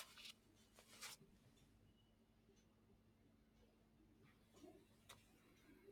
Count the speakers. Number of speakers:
zero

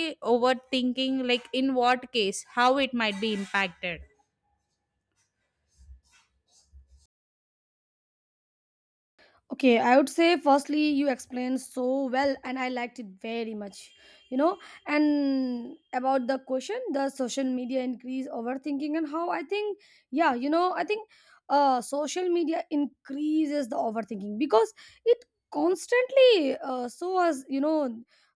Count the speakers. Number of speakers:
two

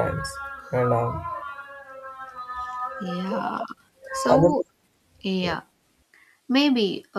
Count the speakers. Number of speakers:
two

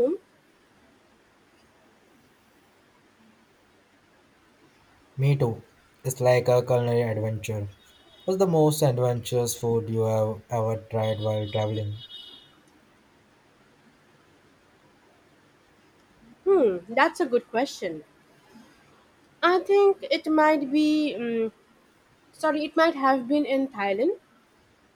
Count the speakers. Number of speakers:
two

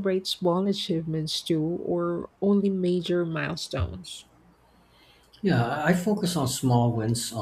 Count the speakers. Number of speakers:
two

